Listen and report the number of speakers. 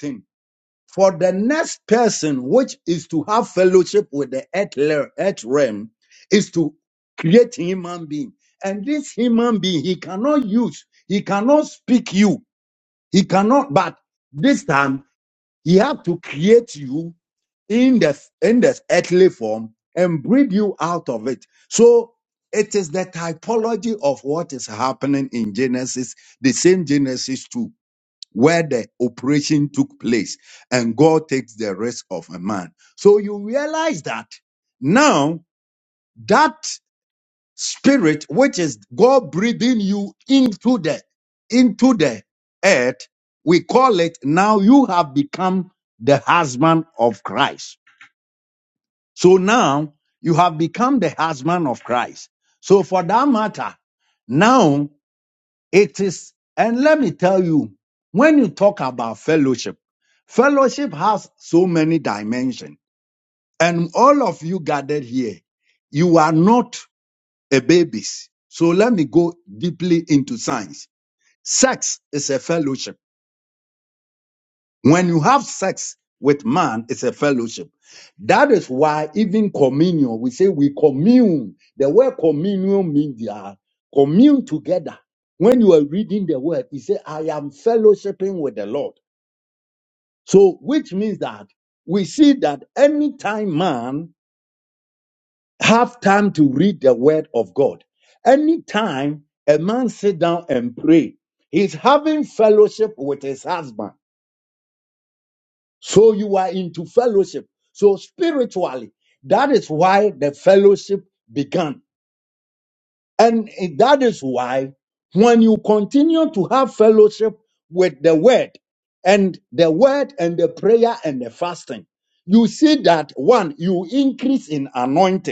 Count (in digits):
1